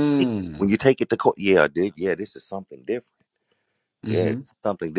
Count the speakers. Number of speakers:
two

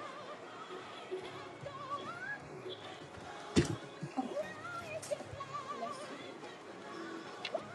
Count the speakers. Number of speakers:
zero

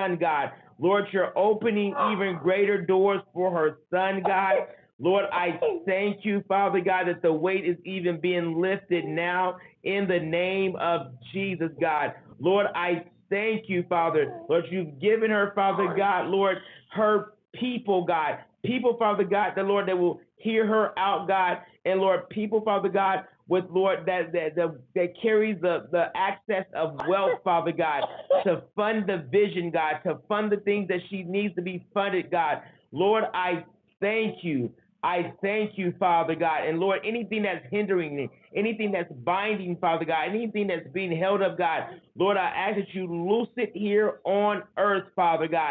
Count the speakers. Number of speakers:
one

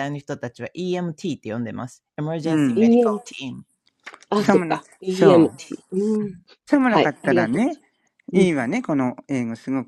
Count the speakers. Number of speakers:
three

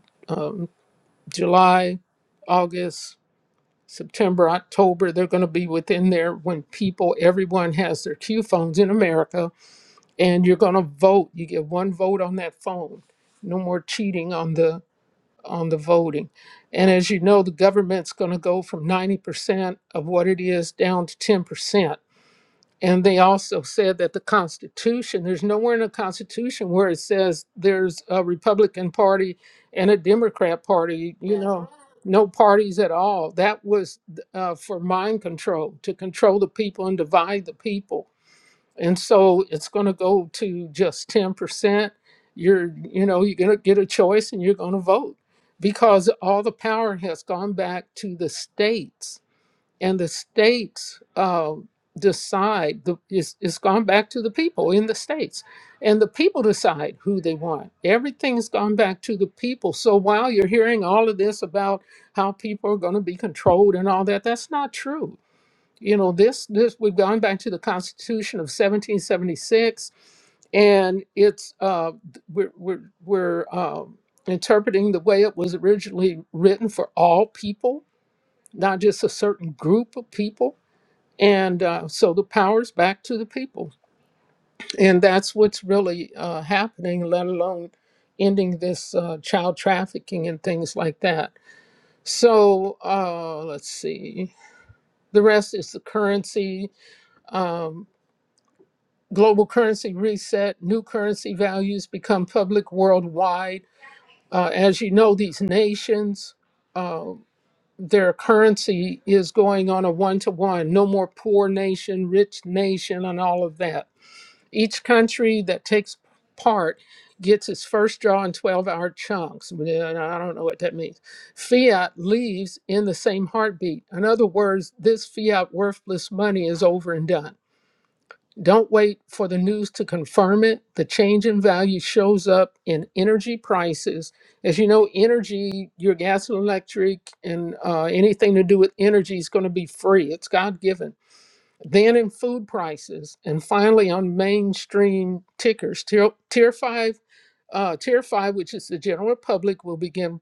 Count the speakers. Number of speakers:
one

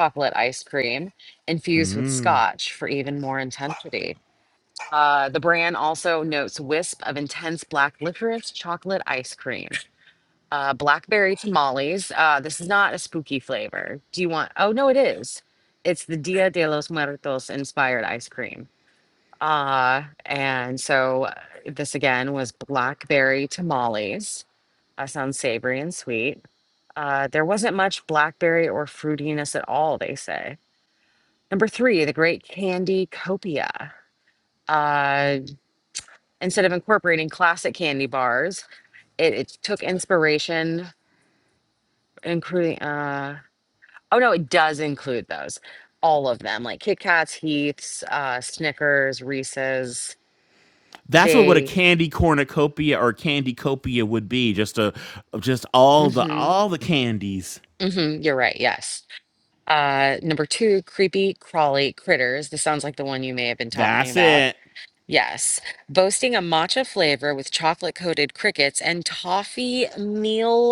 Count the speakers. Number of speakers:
two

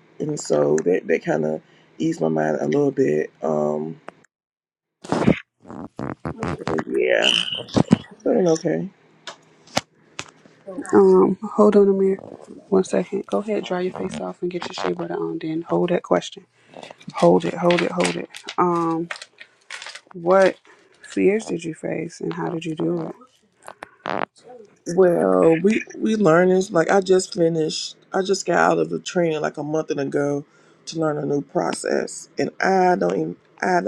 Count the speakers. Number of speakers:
two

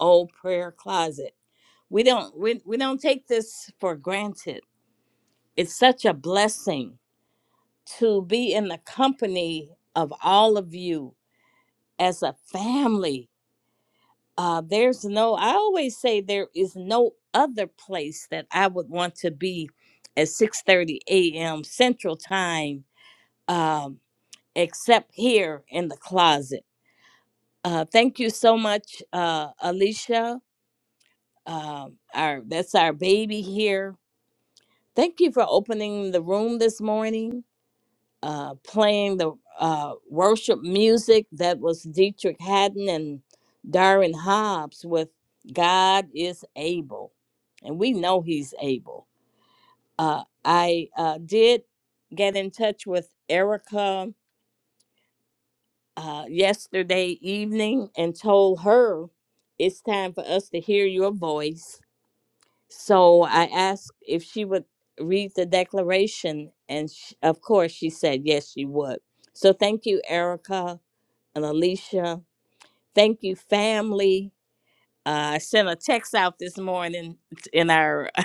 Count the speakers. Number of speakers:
one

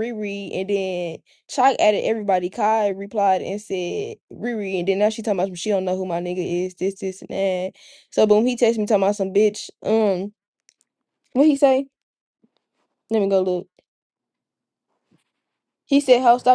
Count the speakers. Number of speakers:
one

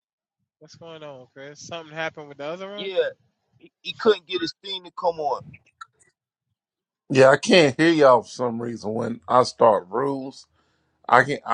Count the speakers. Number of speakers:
three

